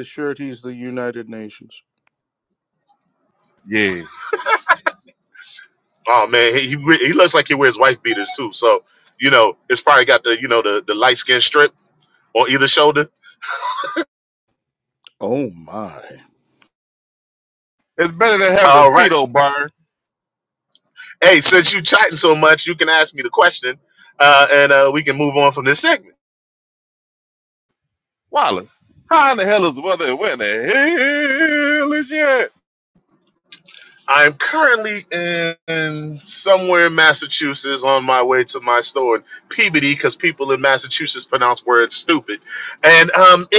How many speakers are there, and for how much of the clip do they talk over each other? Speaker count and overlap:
3, about 1%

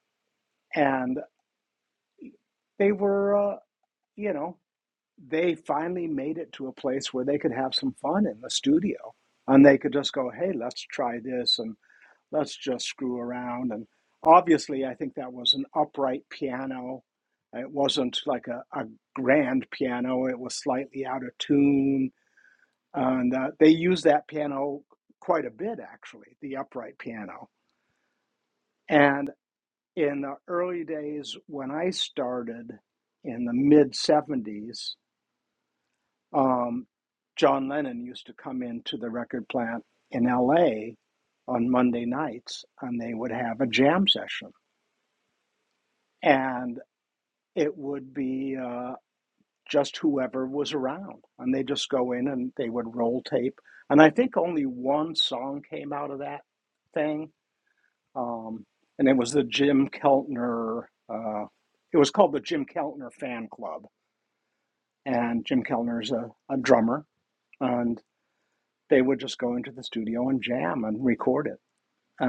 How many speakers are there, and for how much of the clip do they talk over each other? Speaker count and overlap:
1, no overlap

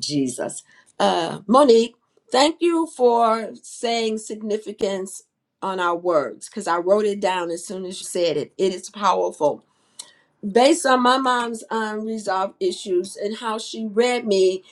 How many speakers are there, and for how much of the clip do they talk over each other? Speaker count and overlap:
1, no overlap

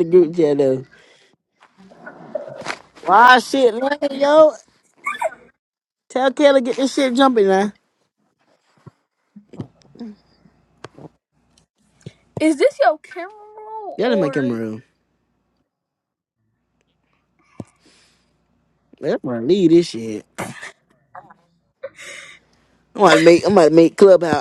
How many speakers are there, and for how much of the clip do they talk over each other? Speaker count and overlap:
2, about 2%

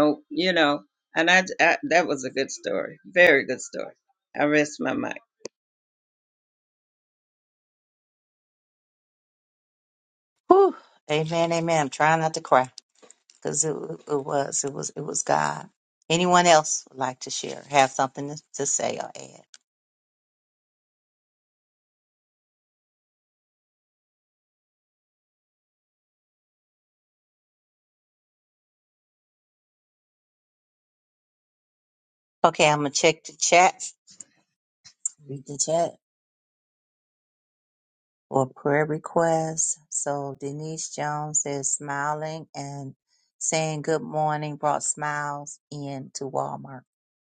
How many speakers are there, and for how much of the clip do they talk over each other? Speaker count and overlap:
2, no overlap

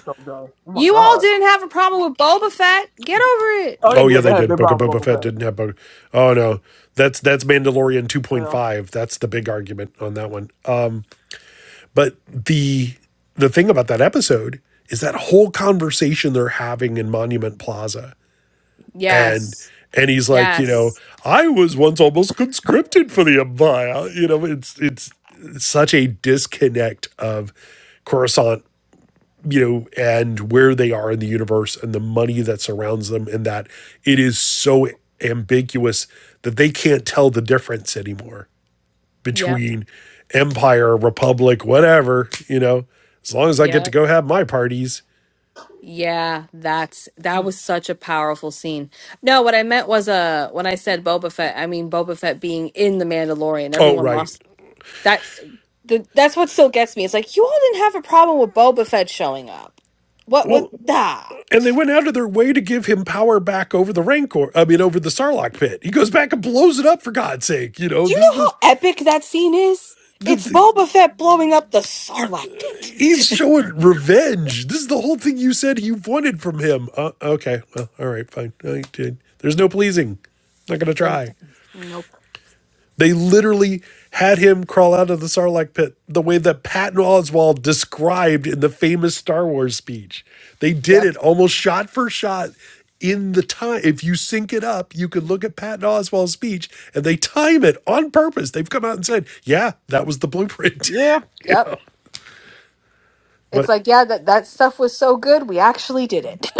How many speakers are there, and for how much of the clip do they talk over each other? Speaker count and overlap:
3, about 5%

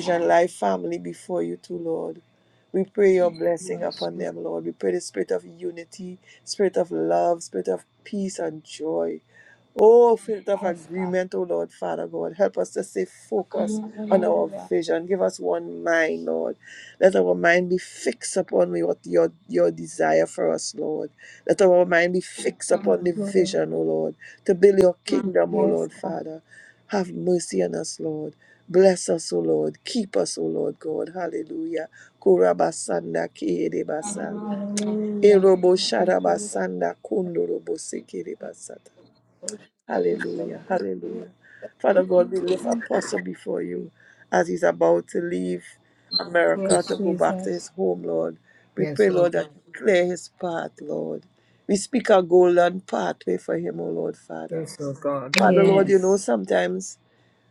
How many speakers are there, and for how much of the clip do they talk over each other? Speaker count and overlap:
3, about 15%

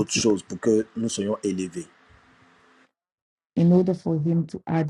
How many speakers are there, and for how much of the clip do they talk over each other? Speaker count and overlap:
2, about 5%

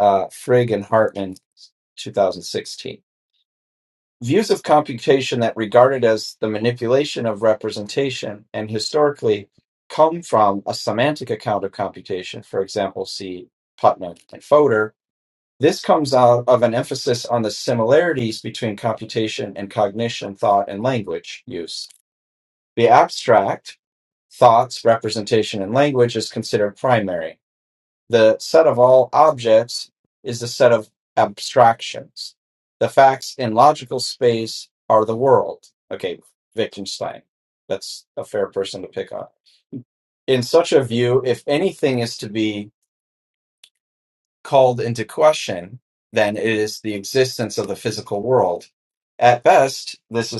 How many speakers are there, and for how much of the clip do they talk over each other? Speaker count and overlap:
1, no overlap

